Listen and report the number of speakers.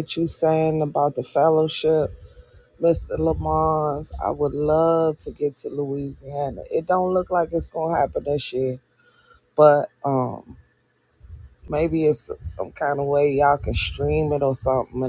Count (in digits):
1